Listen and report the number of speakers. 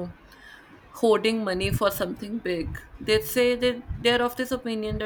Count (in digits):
1